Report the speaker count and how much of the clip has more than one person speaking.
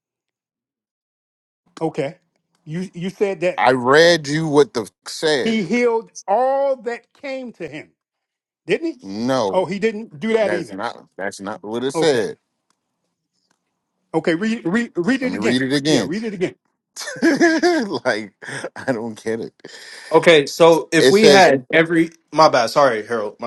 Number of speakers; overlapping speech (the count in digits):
3, about 9%